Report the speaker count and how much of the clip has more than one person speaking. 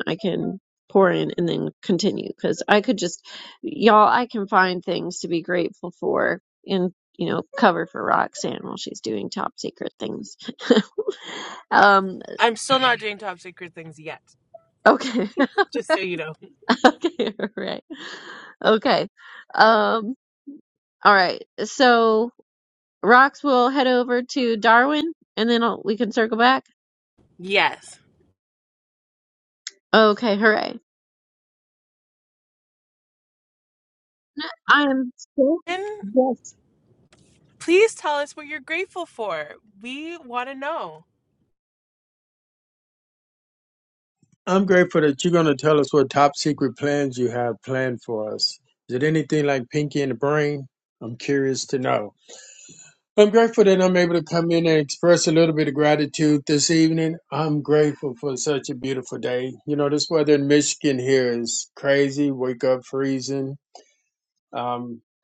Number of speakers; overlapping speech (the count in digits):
3, no overlap